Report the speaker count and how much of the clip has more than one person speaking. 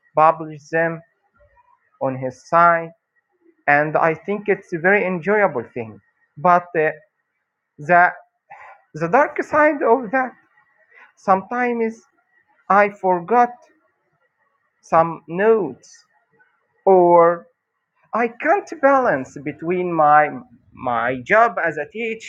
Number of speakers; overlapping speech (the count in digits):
1, no overlap